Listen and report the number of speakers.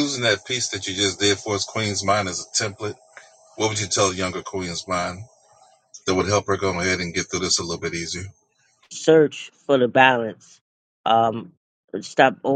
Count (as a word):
two